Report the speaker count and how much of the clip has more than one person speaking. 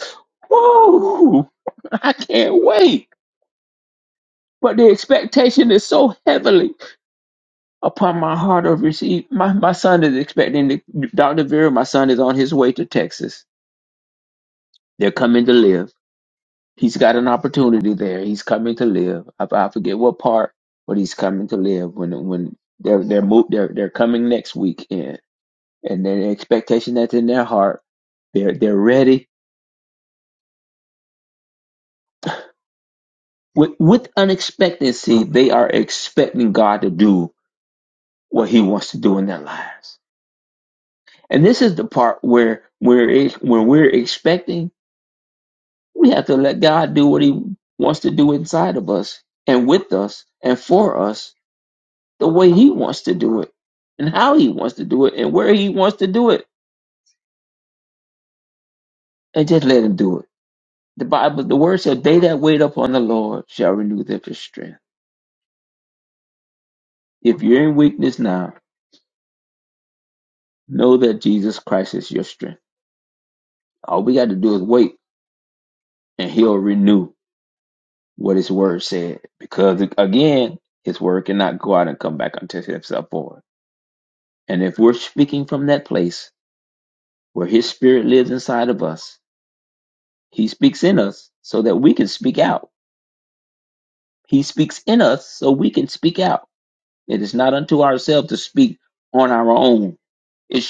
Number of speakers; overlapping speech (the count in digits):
1, no overlap